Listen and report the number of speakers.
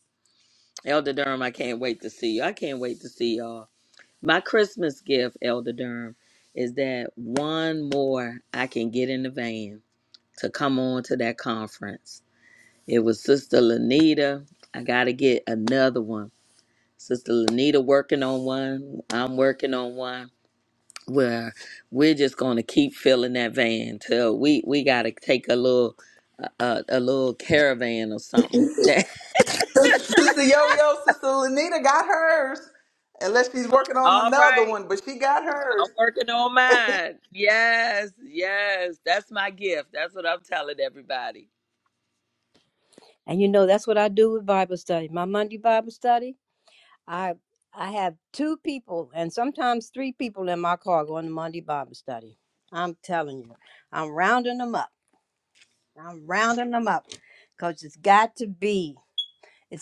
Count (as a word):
three